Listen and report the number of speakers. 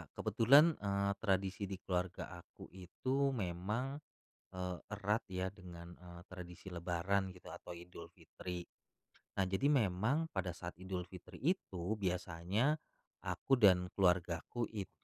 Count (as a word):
one